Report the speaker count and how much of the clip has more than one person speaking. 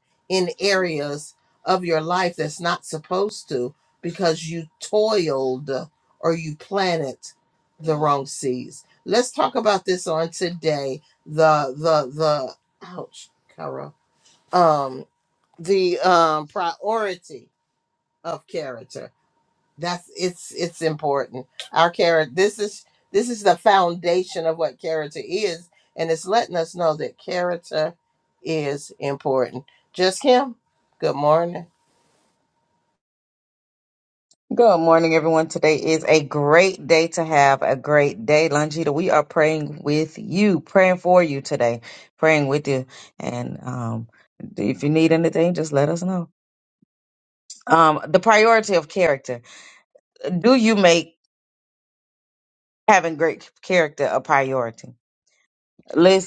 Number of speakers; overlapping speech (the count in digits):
2, no overlap